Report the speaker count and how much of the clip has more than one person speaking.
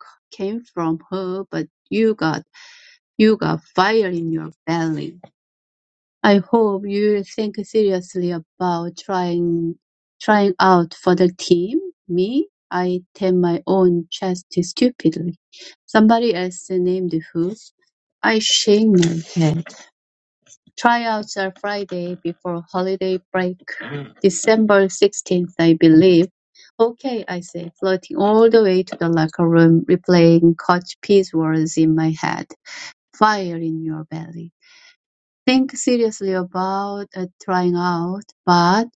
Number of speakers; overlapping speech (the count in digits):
1, no overlap